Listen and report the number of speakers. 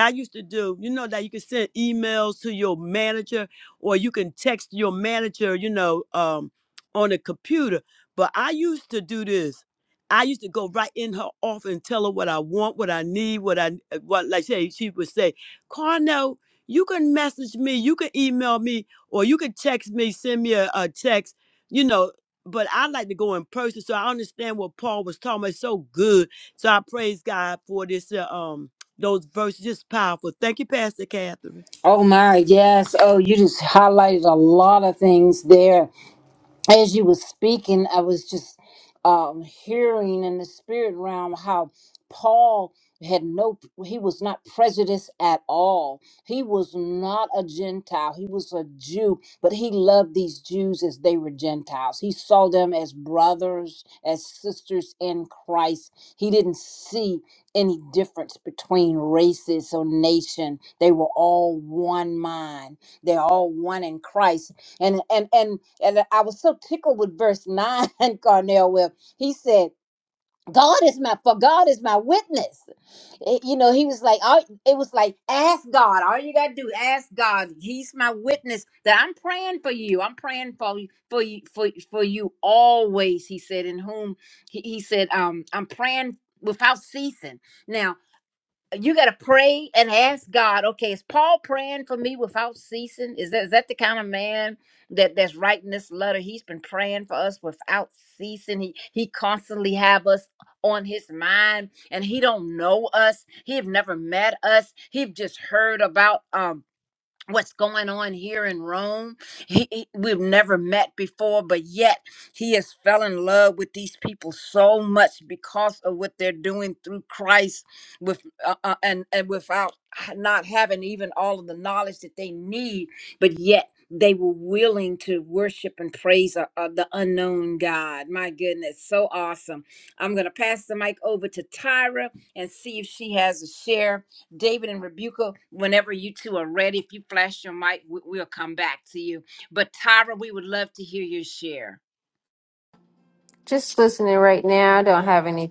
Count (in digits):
3